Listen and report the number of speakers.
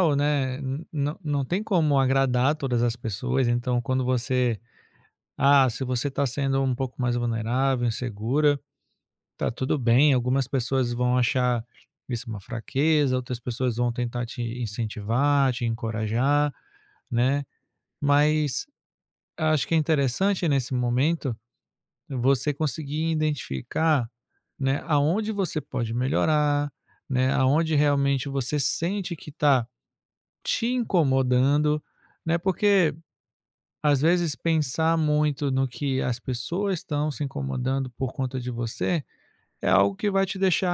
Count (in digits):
1